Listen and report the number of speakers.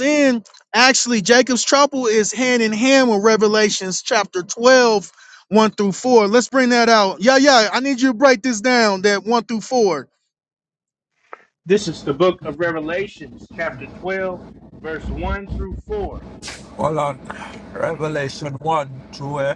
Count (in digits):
3